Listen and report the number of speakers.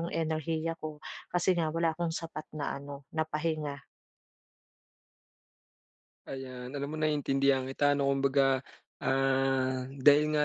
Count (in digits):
2